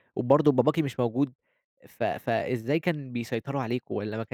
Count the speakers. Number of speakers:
one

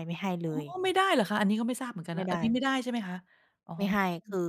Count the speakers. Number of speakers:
two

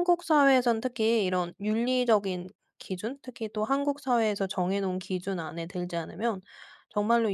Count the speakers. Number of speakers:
one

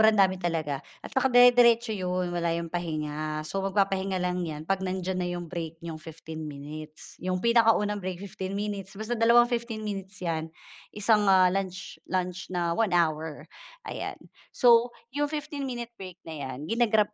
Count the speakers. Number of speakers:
one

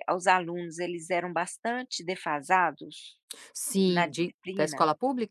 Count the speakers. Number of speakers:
two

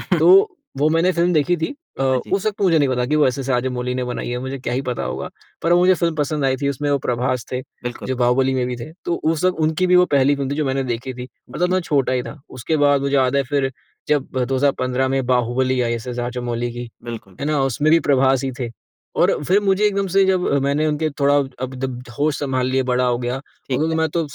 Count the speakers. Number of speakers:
two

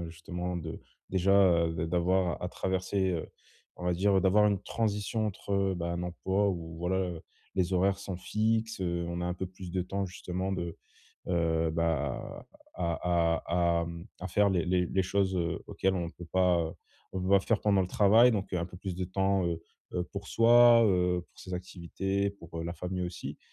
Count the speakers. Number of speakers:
one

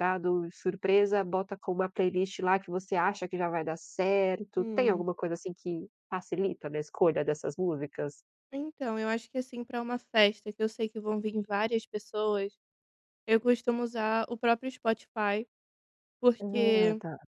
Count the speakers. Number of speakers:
two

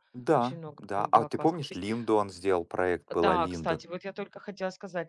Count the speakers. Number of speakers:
two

